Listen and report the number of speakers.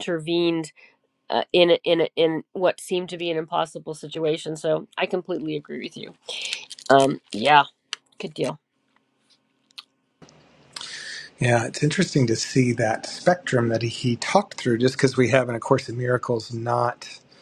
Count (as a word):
two